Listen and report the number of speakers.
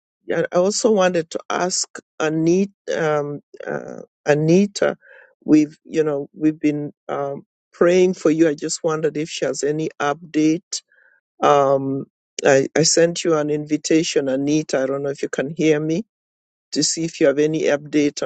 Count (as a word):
one